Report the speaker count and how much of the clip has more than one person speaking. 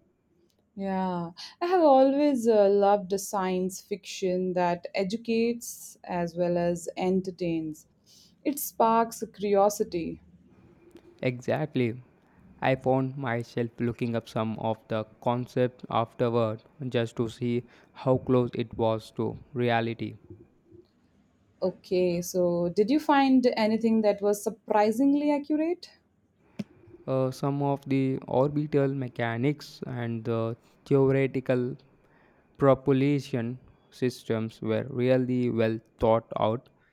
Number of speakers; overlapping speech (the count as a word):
two, no overlap